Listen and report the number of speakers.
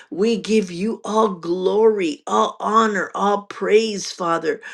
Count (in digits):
1